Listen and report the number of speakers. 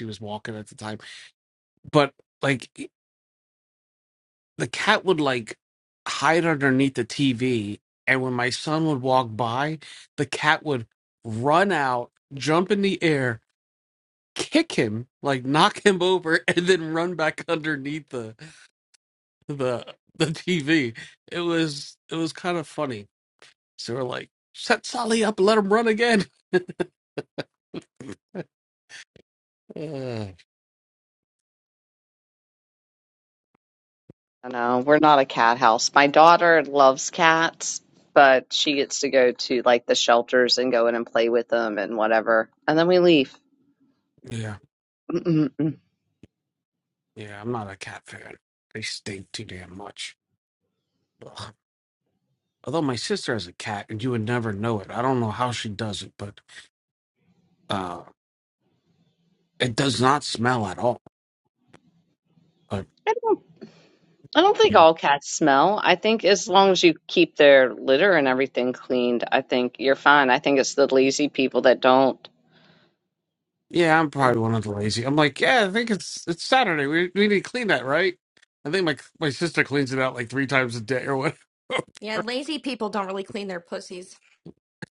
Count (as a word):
three